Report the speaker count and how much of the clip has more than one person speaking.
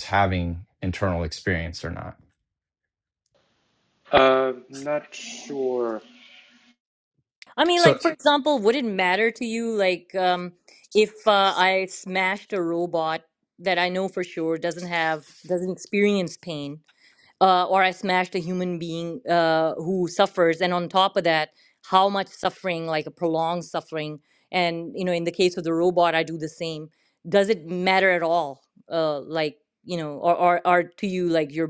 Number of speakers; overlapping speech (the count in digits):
3, about 1%